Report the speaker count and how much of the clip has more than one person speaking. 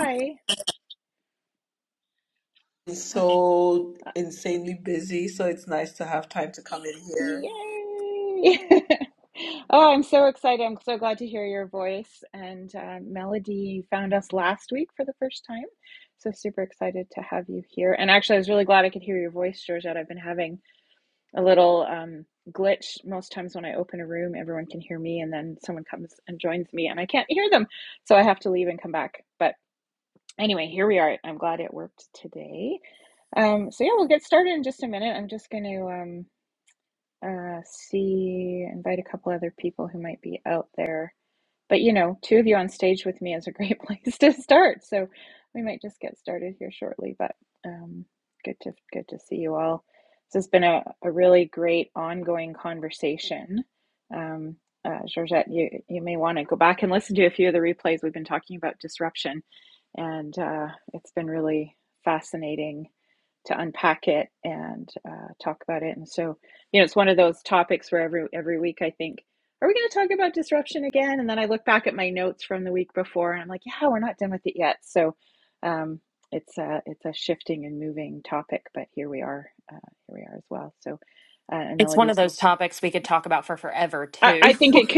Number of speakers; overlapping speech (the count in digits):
3, about 1%